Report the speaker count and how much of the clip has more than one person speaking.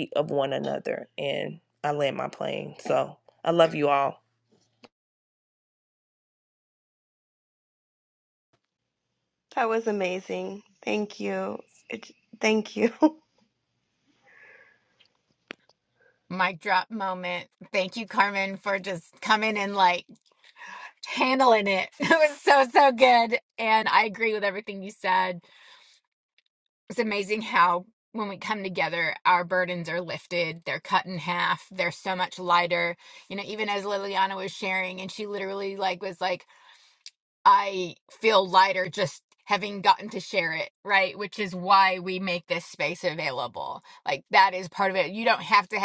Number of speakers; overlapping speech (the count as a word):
three, no overlap